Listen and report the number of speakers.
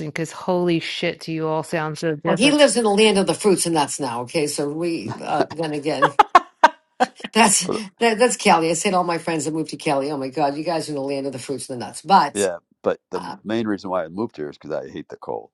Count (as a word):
three